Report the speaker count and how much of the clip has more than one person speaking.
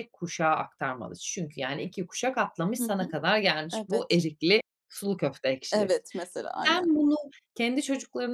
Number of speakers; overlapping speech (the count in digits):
2, about 13%